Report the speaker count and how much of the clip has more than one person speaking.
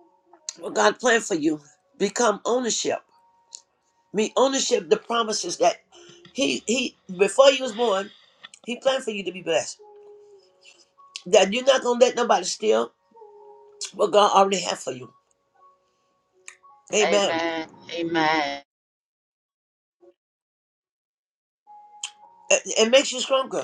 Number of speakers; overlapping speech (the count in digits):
2, about 2%